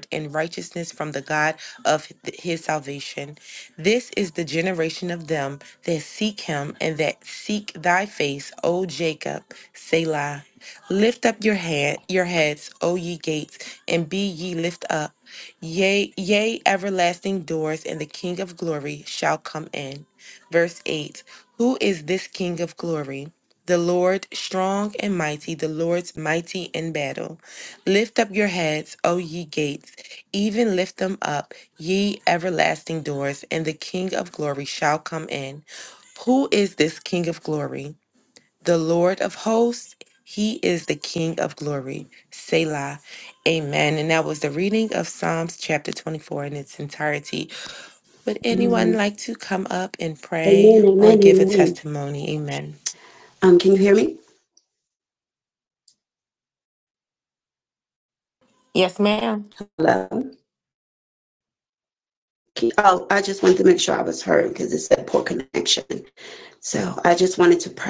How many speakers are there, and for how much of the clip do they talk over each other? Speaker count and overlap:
two, about 3%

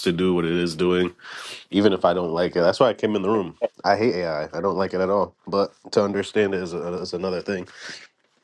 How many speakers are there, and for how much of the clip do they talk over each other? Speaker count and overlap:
one, no overlap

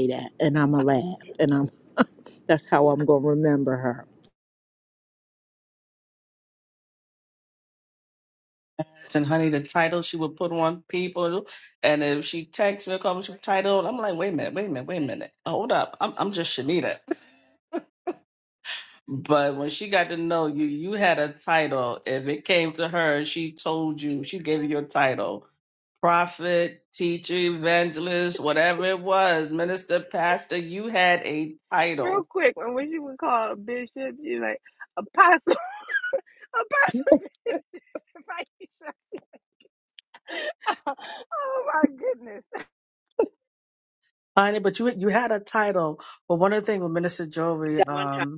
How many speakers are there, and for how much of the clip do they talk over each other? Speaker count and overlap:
three, under 1%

